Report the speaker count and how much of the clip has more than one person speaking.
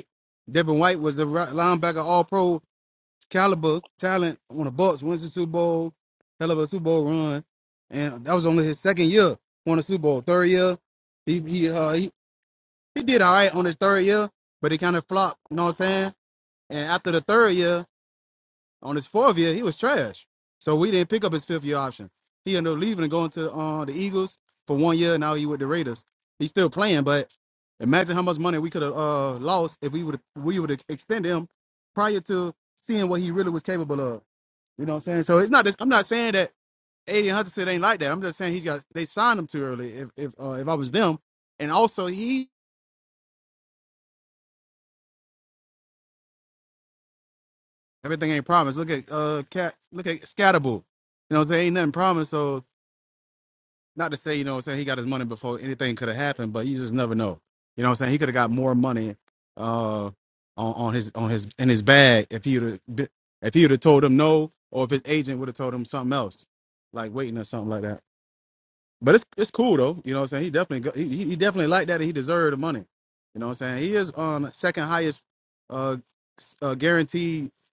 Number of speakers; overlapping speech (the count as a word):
one, no overlap